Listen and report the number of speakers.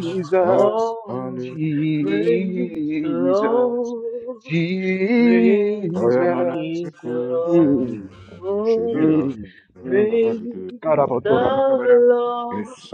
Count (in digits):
3